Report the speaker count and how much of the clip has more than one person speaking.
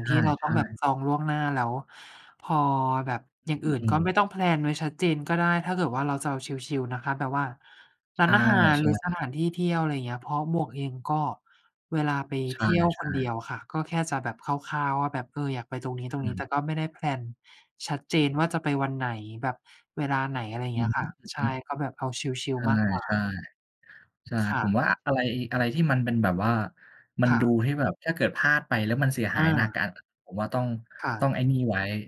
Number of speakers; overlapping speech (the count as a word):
two, about 10%